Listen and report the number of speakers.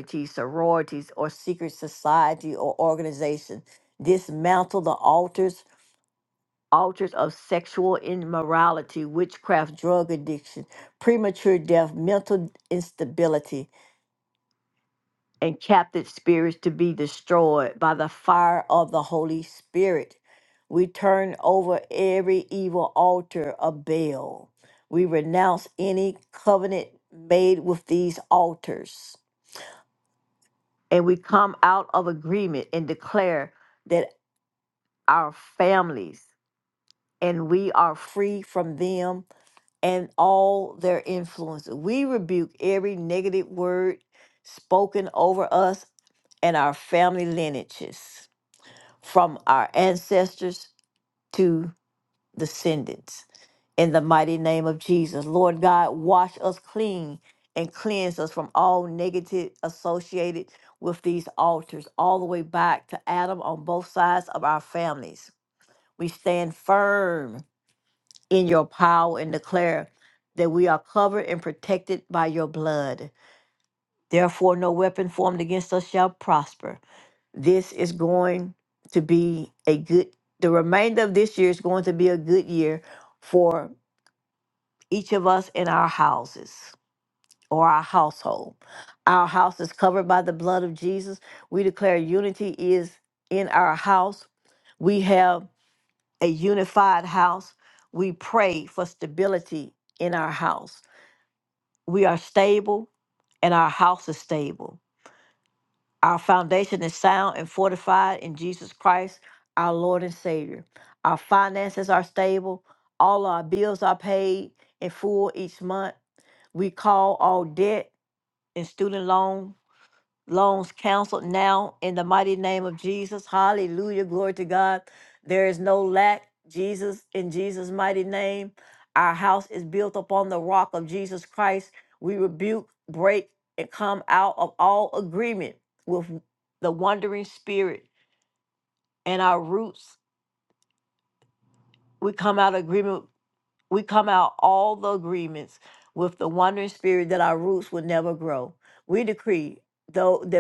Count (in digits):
1